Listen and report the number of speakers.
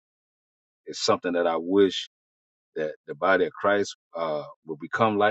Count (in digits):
1